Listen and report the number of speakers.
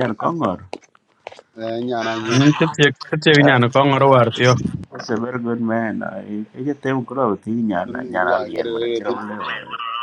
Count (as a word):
three